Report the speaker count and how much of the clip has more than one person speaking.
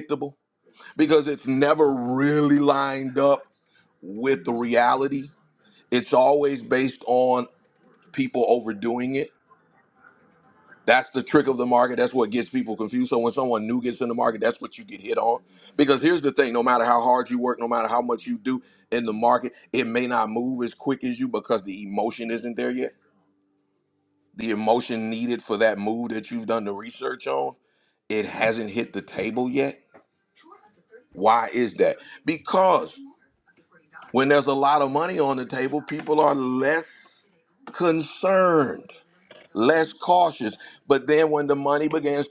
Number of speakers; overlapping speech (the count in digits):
1, no overlap